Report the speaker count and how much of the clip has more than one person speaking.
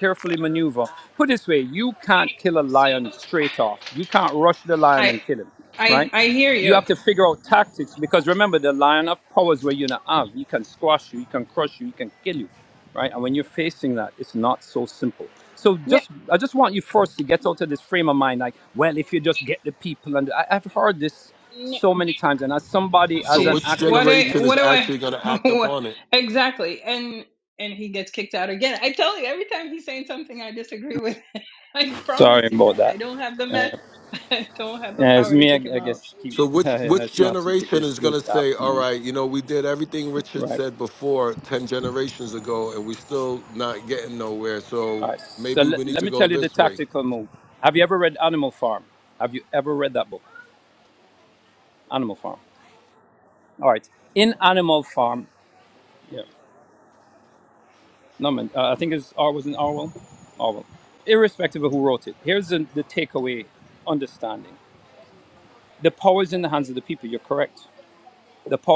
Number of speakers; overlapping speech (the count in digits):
3, about 13%